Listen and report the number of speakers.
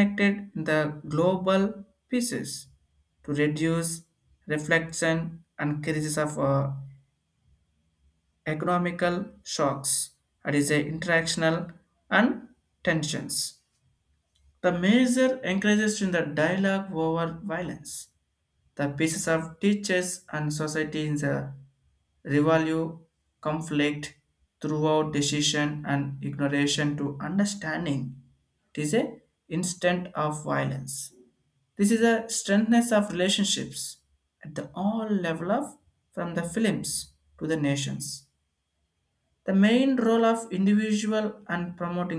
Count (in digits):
1